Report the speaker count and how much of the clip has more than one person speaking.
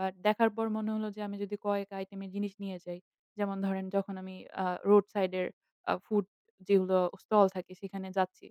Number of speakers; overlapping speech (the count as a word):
one, no overlap